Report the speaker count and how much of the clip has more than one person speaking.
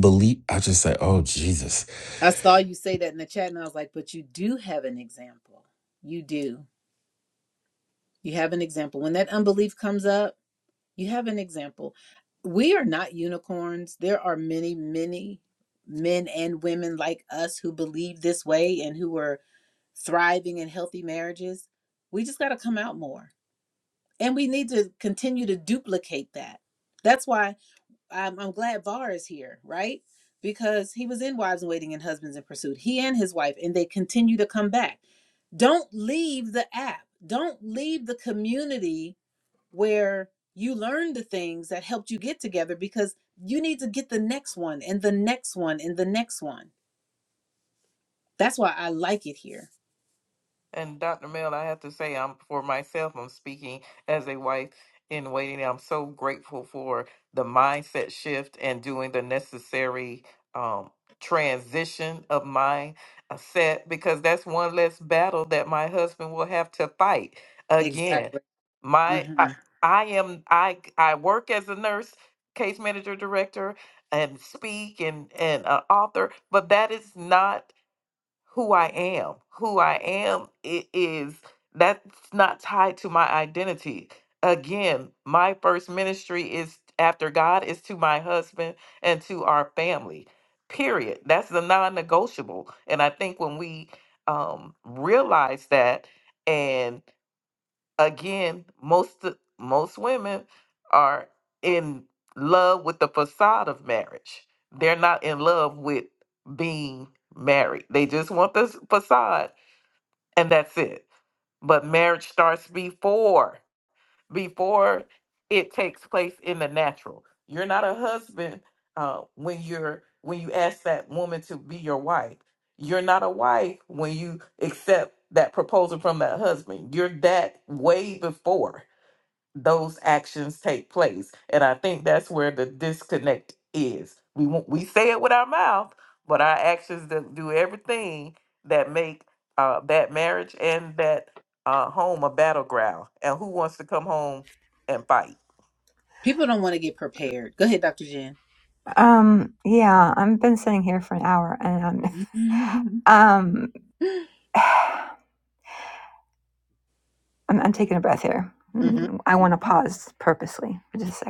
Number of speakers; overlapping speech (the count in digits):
4, about 1%